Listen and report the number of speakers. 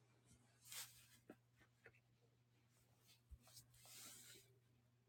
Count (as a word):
zero